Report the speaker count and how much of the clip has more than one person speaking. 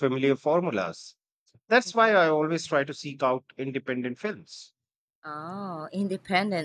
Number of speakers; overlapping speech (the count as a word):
two, about 1%